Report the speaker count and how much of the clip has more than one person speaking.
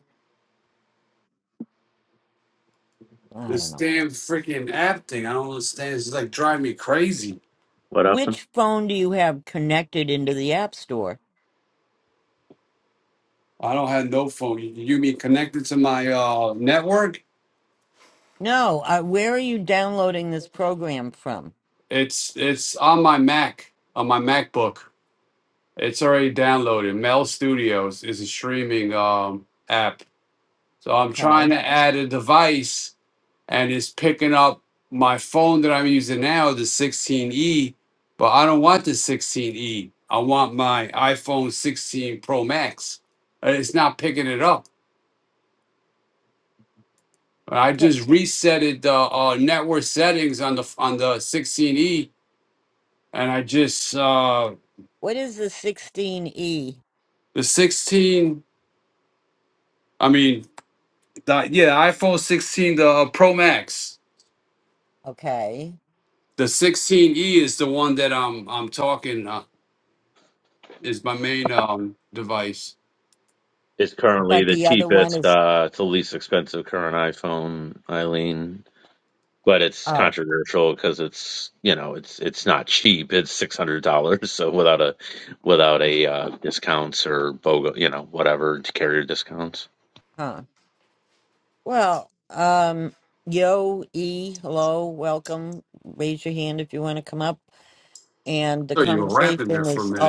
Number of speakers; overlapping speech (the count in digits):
3, about 4%